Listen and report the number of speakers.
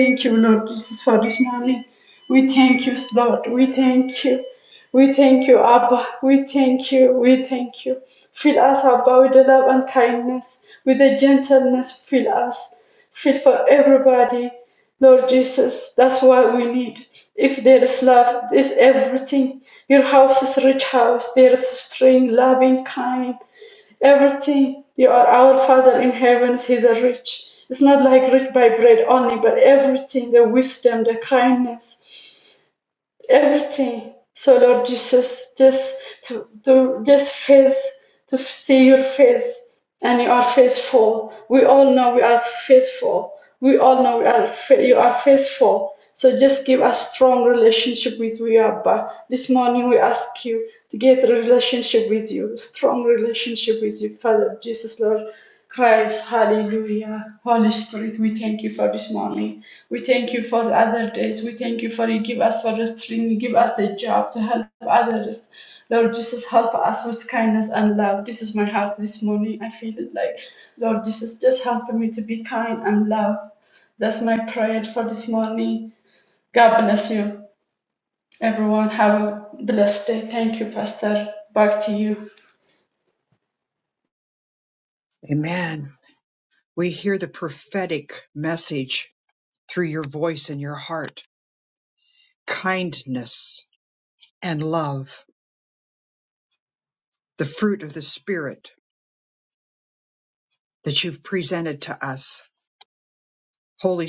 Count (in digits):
2